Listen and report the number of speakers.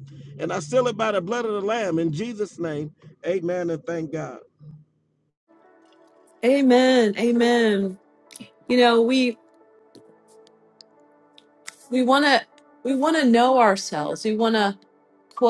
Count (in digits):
2